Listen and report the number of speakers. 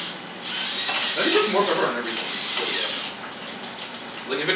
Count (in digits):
1